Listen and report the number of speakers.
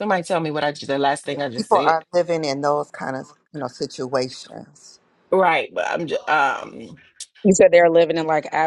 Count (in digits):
3